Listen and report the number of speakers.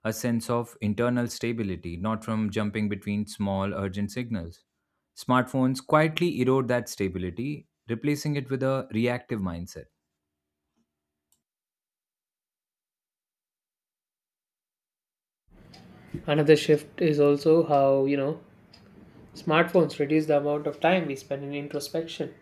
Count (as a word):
two